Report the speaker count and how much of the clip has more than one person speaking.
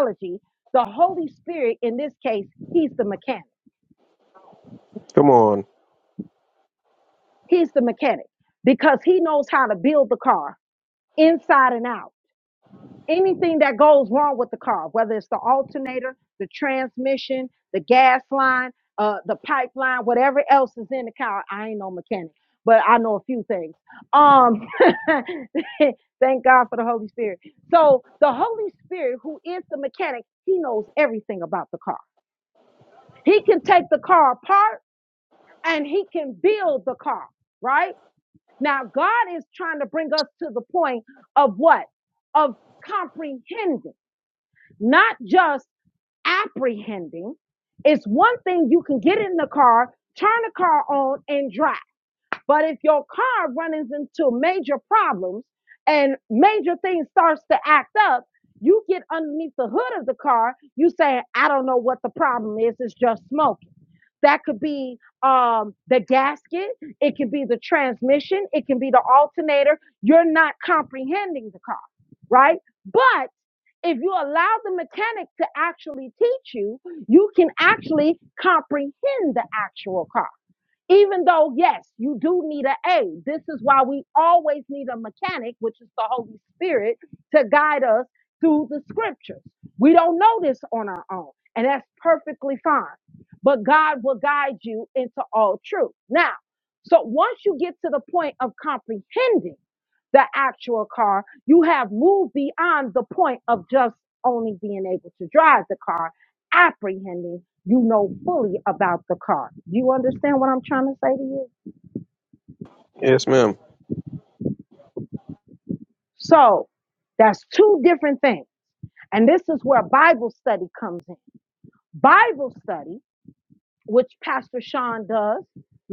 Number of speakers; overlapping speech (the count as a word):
two, no overlap